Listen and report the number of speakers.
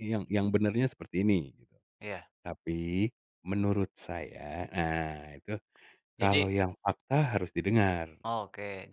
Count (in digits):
2